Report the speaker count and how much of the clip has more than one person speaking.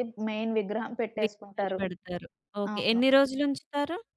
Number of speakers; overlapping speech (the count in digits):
2, about 15%